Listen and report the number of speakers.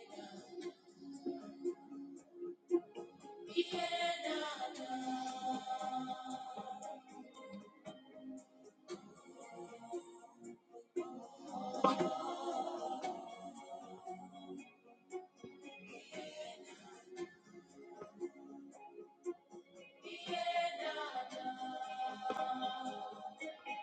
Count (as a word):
zero